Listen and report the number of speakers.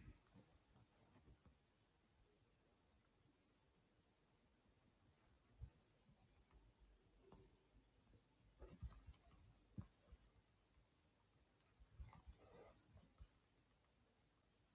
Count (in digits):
0